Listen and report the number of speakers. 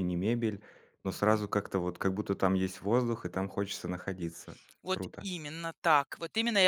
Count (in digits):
2